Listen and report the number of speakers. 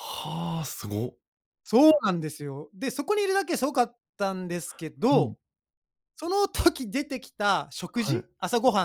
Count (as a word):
two